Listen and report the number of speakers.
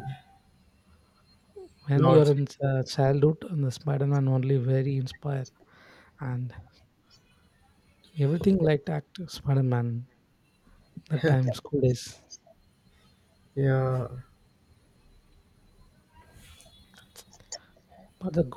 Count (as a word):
two